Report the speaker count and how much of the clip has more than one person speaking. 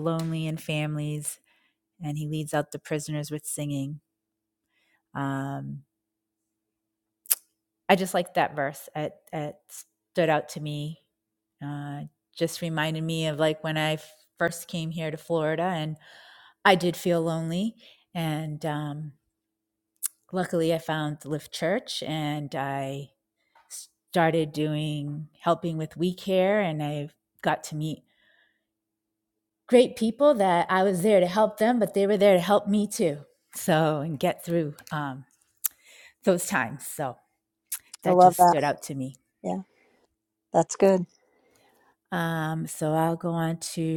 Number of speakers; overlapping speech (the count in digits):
2, about 1%